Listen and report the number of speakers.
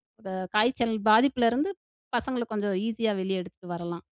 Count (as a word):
one